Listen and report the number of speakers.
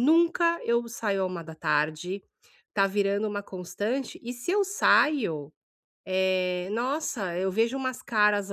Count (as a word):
one